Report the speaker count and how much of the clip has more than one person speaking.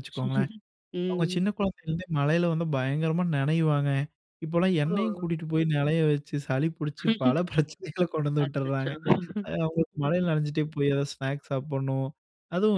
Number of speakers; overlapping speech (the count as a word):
two, about 12%